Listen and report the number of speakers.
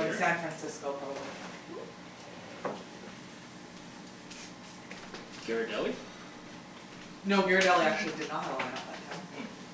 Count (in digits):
2